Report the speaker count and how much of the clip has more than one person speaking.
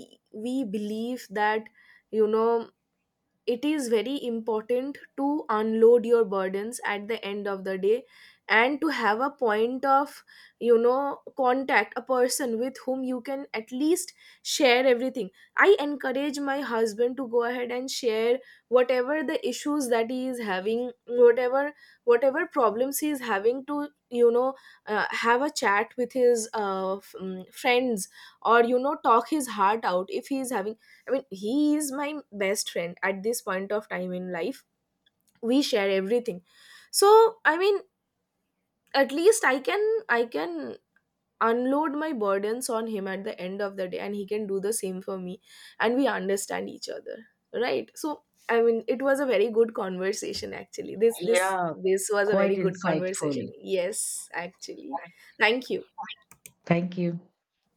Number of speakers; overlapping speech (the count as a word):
two, about 3%